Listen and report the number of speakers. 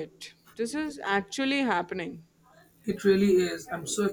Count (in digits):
2